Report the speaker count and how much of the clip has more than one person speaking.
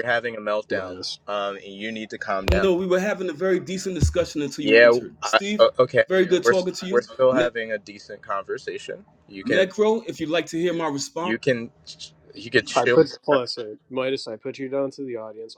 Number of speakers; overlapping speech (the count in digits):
3, about 21%